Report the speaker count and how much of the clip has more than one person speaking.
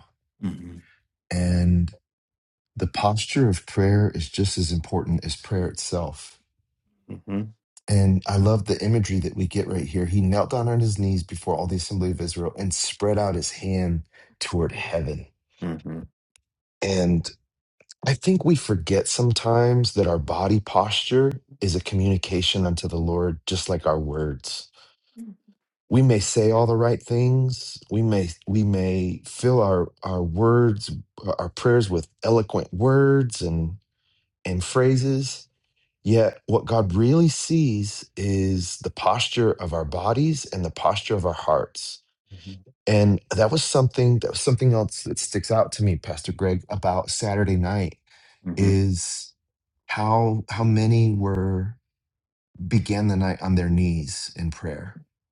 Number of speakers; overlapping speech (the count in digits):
2, under 1%